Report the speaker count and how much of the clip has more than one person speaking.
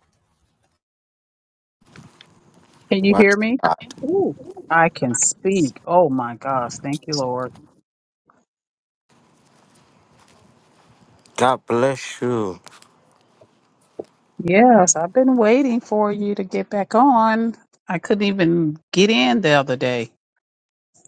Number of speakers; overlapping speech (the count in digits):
2, about 3%